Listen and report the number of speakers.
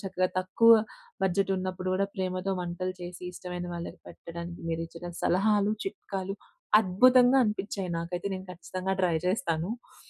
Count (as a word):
one